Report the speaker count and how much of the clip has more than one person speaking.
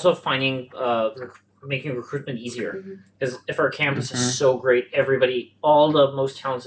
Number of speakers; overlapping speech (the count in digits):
1, no overlap